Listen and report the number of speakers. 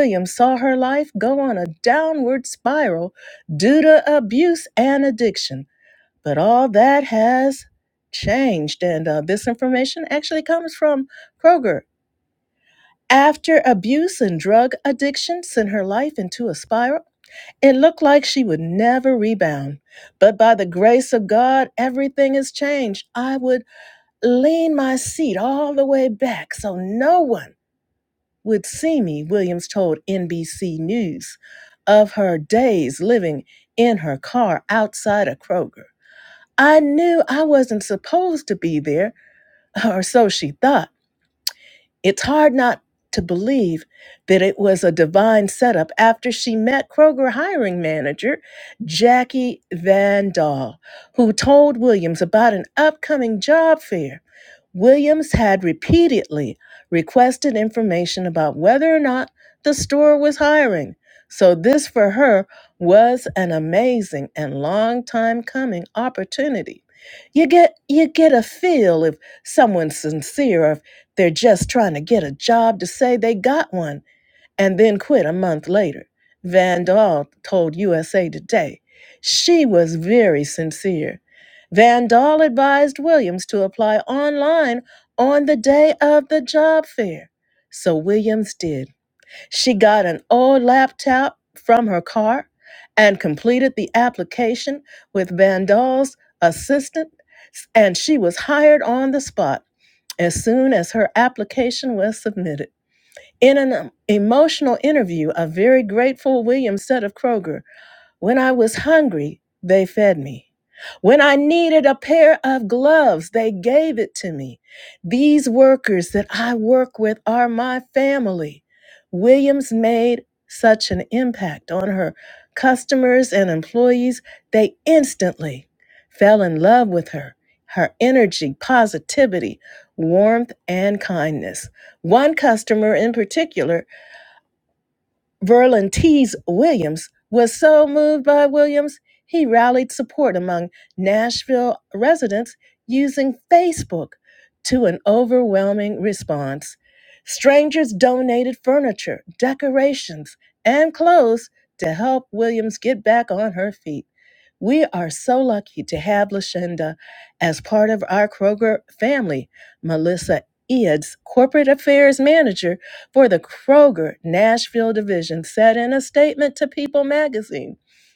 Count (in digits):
1